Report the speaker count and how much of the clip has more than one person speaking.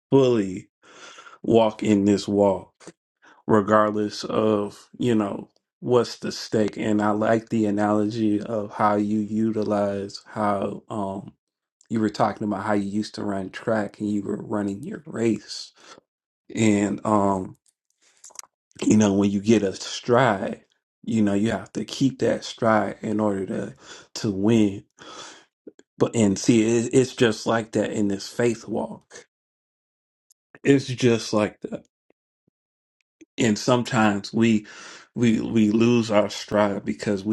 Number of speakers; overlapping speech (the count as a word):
one, no overlap